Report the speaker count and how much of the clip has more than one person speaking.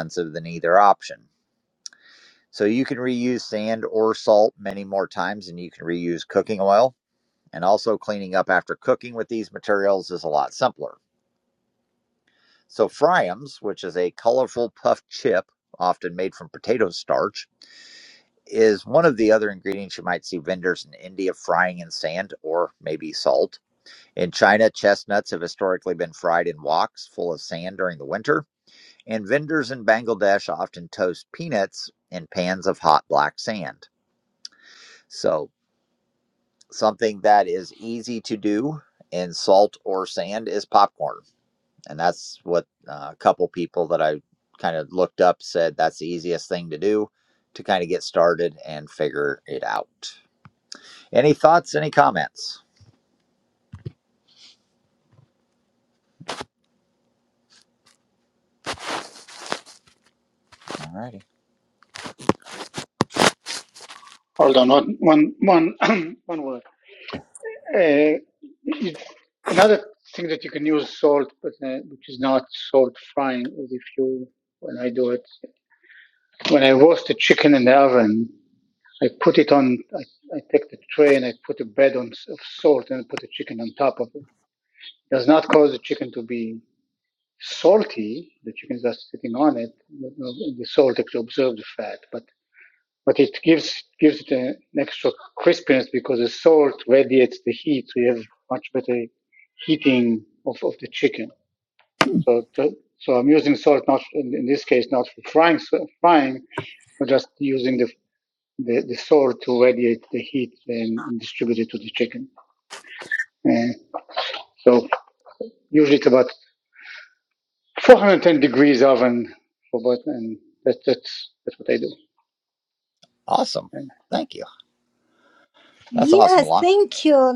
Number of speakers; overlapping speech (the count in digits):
3, about 1%